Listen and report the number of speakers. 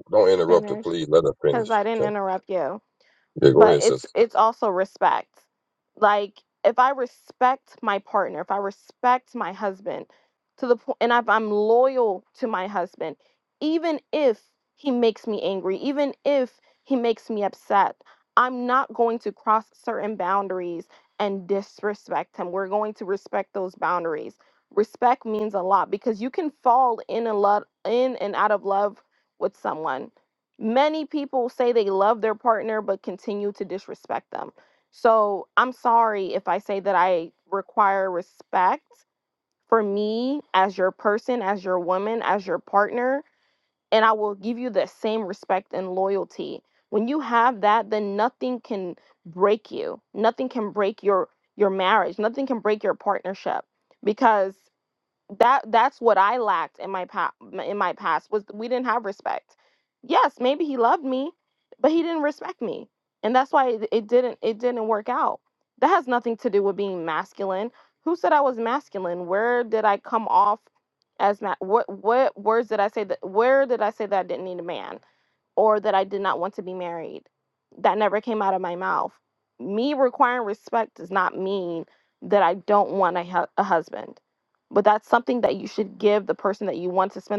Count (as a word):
two